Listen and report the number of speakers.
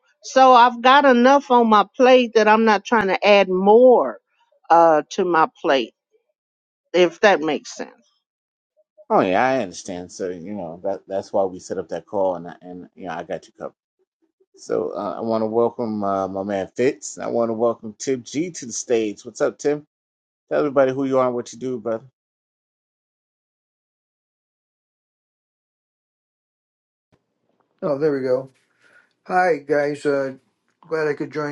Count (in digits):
3